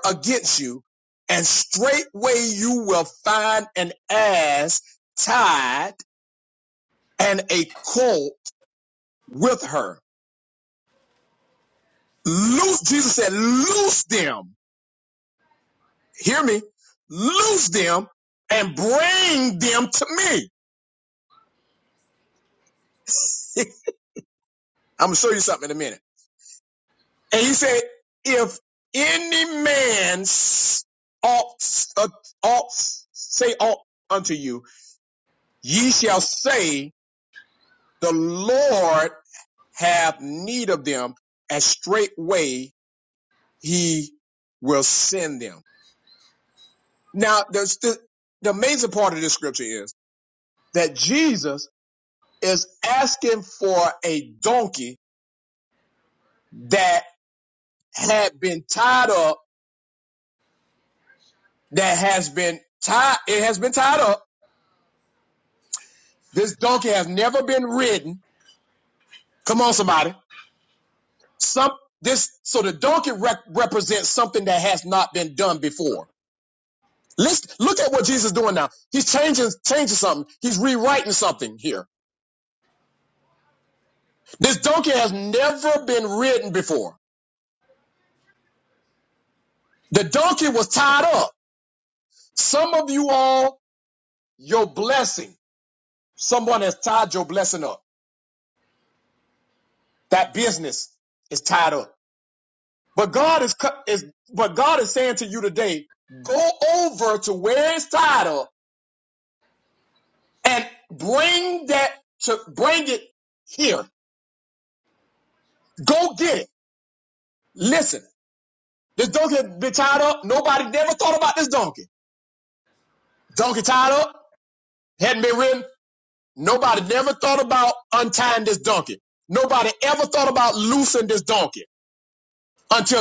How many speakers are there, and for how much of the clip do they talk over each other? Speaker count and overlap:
1, no overlap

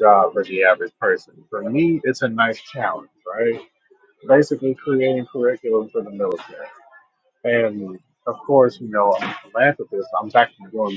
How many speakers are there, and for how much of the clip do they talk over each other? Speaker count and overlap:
1, no overlap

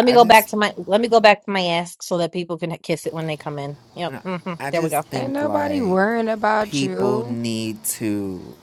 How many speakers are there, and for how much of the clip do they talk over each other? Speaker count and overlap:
3, about 32%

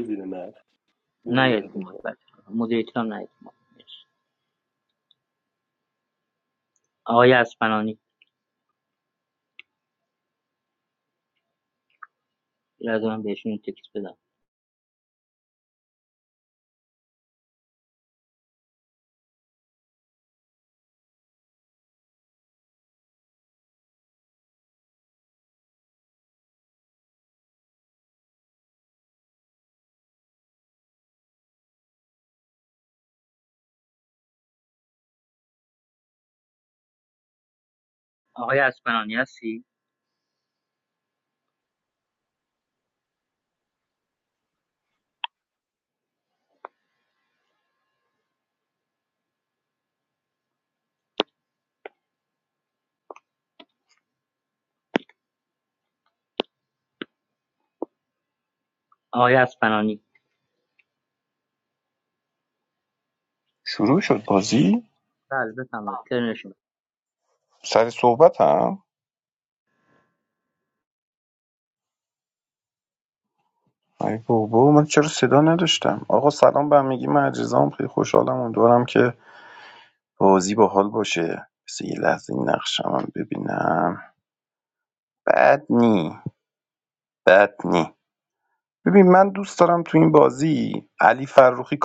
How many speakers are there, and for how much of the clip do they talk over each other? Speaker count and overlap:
3, about 1%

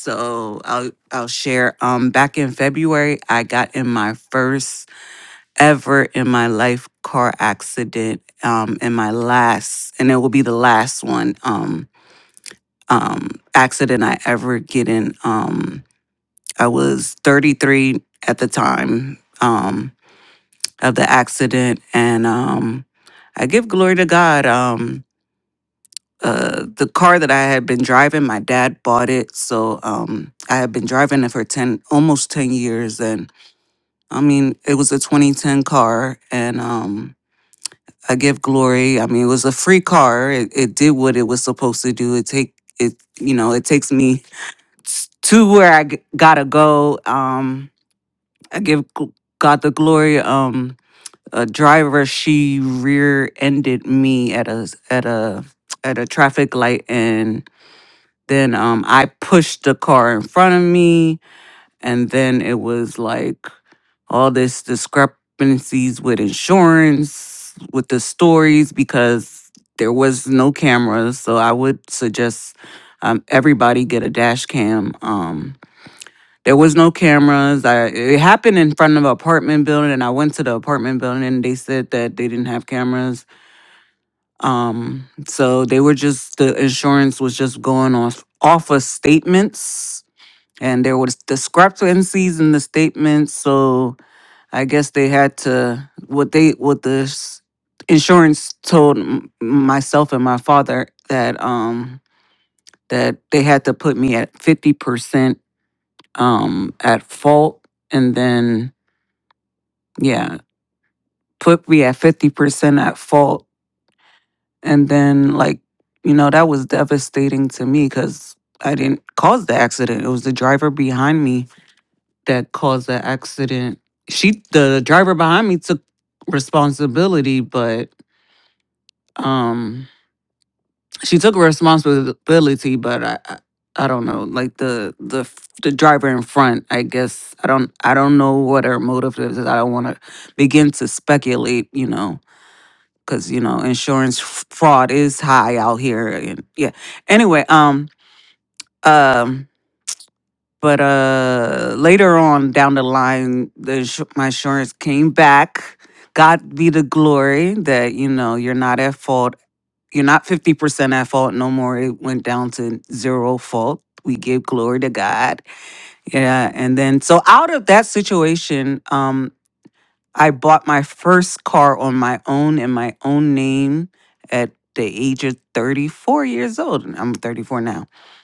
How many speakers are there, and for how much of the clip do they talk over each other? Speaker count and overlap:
1, no overlap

